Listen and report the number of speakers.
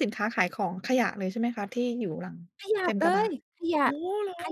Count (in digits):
2